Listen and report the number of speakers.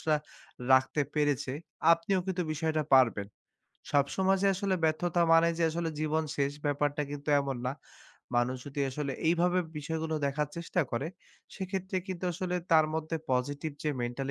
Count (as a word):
one